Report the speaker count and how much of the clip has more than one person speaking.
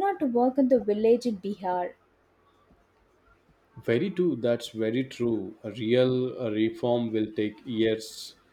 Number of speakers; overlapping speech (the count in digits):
2, no overlap